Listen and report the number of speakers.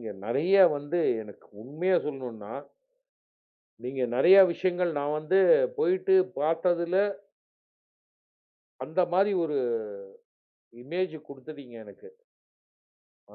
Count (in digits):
1